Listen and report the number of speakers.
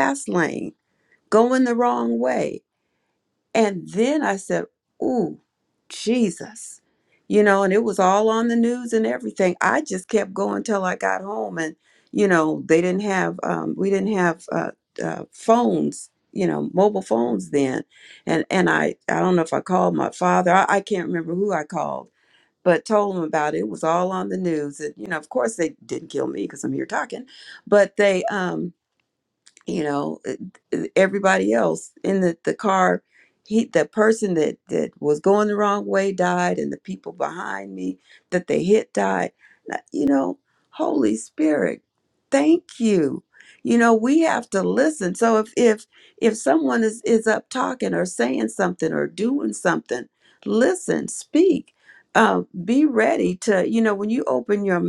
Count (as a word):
one